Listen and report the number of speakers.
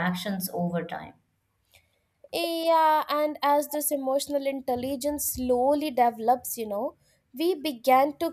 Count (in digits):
2